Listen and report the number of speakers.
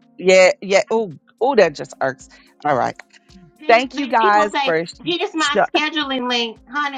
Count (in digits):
2